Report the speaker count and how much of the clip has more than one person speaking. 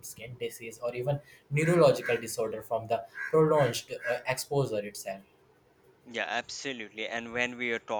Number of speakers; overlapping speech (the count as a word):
two, no overlap